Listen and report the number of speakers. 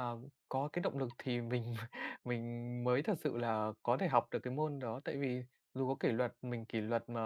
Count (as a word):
one